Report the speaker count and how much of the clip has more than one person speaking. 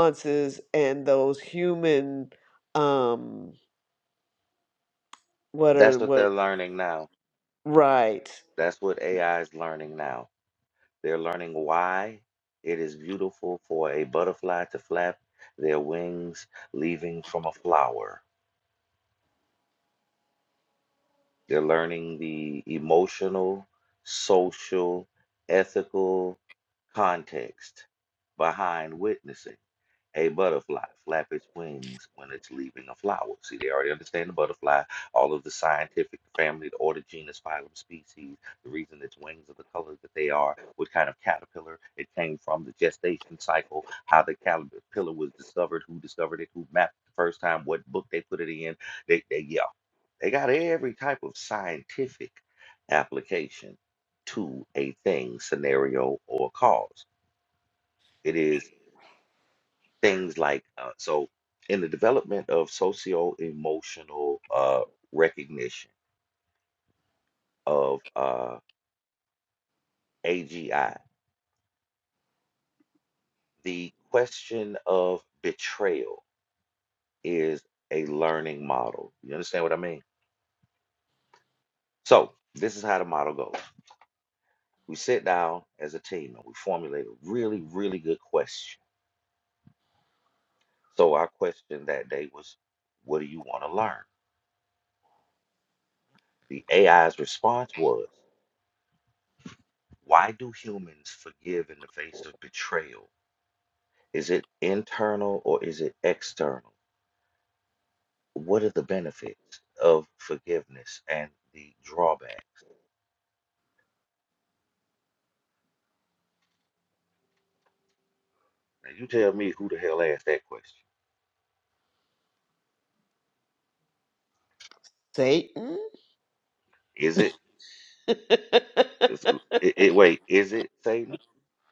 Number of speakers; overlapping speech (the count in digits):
2, under 1%